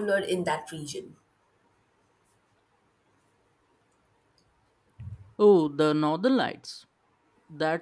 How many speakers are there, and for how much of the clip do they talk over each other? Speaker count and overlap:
two, no overlap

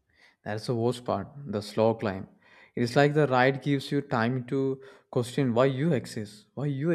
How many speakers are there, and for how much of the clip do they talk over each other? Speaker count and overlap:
one, no overlap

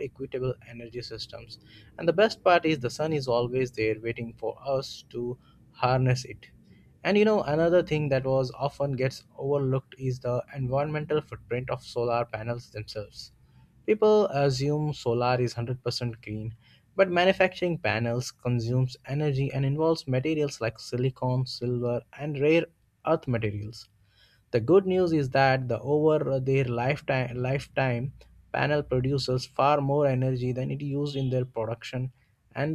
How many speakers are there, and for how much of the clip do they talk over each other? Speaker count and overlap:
one, no overlap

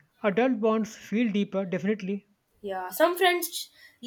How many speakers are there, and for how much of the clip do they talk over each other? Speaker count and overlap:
two, no overlap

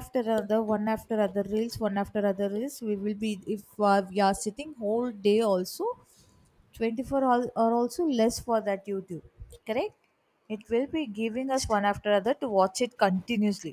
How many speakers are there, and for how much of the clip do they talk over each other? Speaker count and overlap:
one, no overlap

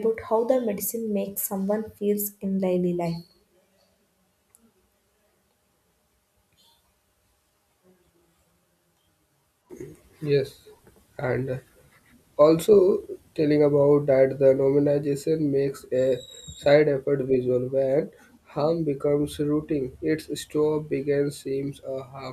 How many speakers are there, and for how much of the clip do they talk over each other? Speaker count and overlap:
two, no overlap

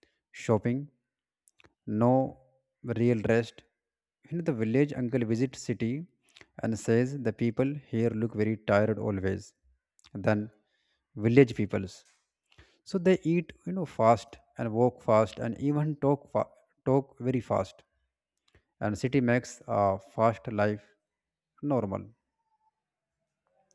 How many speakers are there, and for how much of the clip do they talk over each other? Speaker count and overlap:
one, no overlap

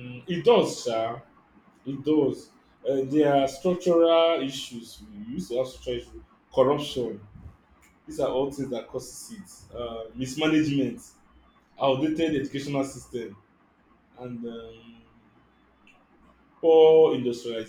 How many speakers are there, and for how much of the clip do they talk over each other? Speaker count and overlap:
one, no overlap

